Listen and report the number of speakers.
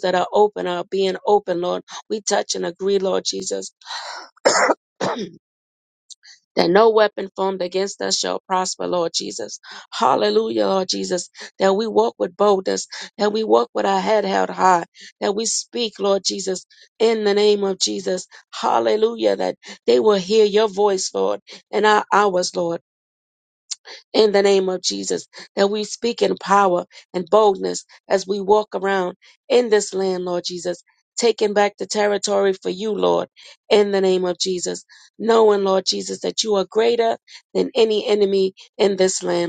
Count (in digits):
1